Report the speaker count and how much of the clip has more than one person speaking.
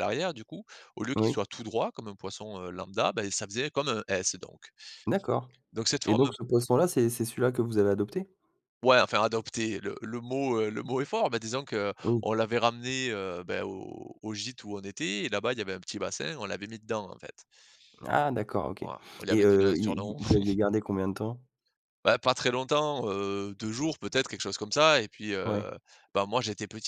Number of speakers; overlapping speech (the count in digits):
2, about 7%